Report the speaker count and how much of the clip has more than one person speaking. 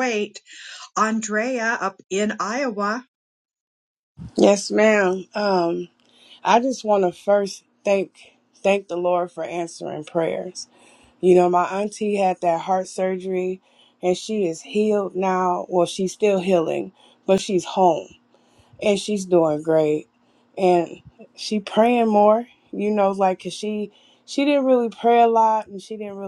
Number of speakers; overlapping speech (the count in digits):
2, no overlap